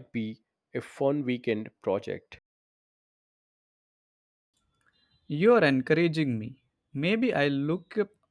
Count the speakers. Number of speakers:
2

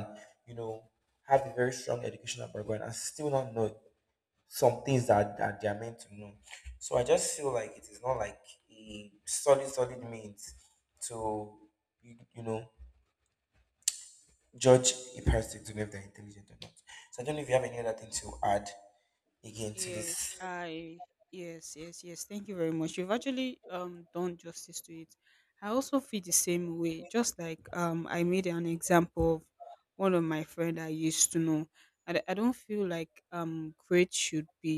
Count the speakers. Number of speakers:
2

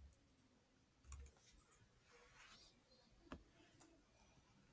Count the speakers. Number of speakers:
0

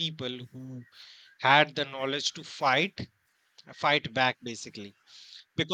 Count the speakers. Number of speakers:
1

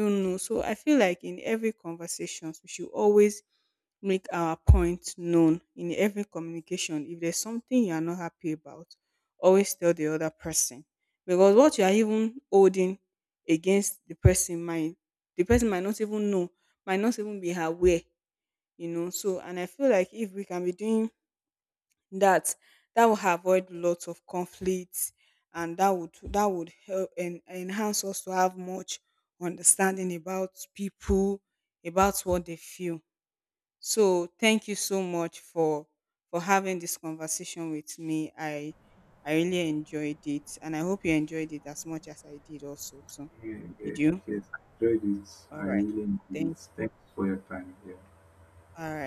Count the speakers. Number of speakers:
2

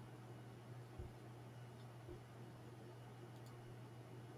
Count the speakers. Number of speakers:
0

